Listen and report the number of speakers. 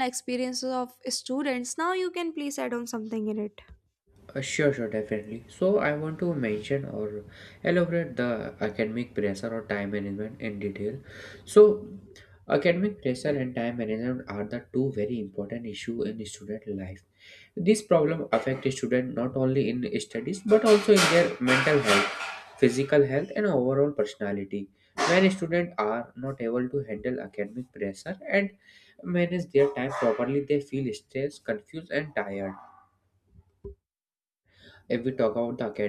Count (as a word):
two